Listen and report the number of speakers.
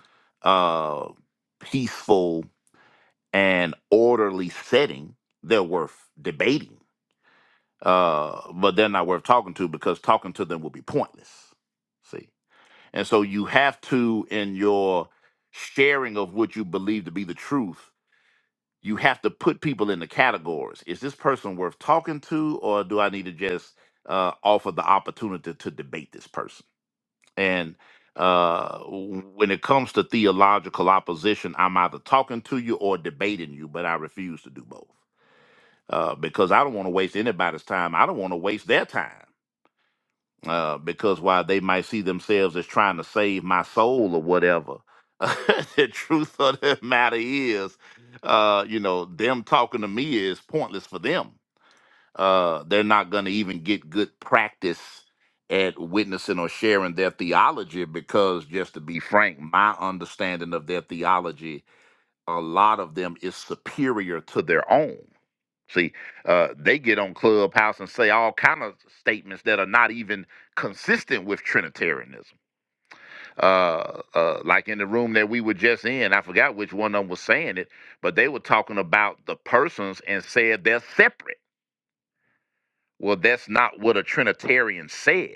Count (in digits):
1